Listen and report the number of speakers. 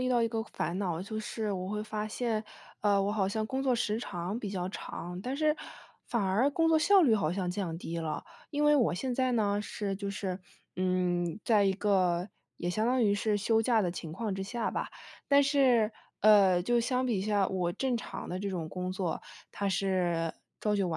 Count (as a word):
one